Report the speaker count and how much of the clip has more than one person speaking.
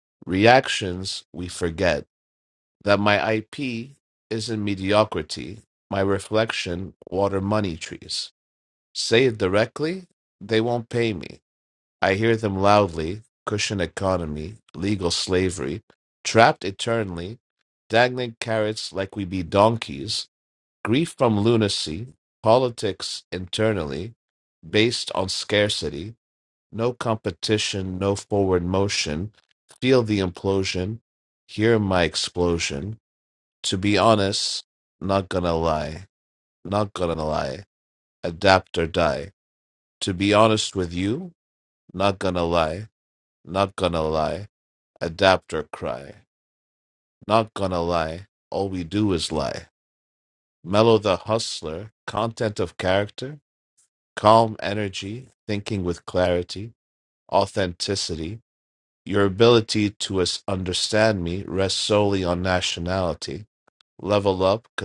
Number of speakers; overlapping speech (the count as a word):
one, no overlap